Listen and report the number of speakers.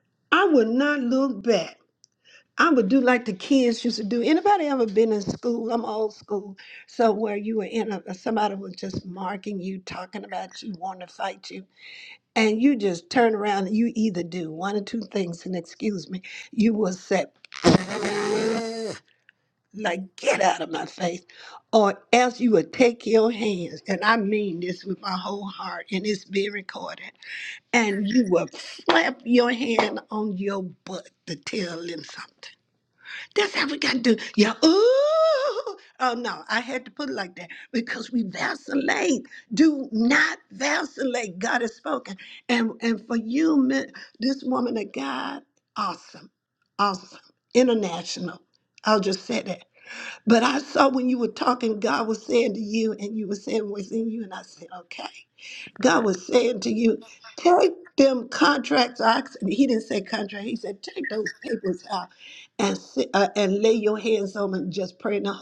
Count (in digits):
1